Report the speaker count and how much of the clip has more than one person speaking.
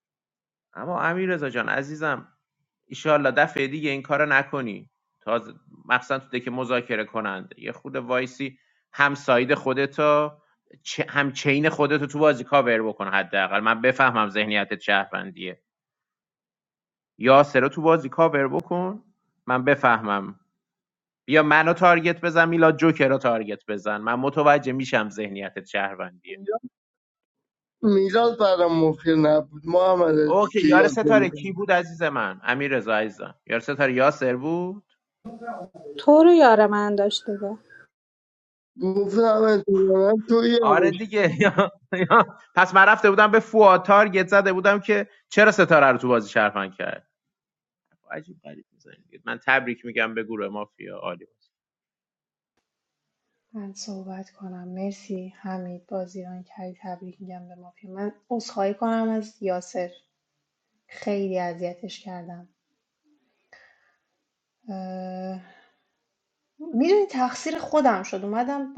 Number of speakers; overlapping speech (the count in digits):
4, about 2%